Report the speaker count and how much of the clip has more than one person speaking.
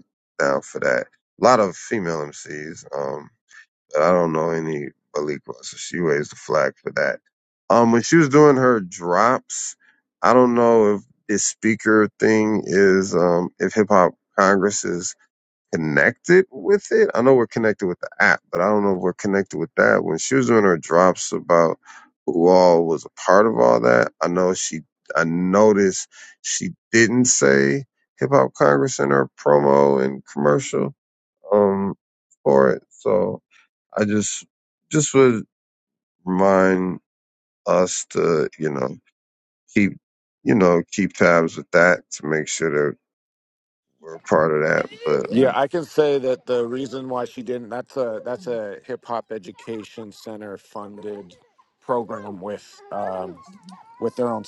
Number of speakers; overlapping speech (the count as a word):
two, under 1%